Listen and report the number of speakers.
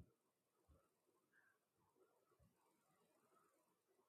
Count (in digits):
0